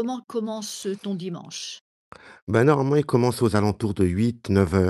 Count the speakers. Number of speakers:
2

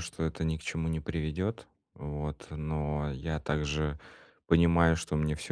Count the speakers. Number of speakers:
1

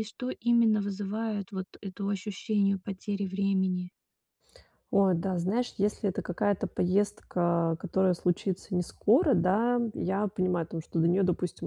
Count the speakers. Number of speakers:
2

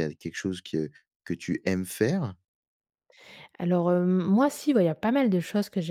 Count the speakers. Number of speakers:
2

